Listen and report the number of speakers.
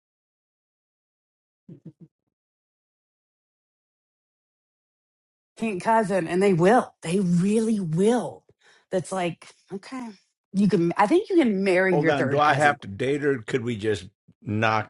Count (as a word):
two